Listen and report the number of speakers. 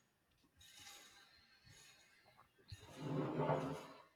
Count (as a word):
zero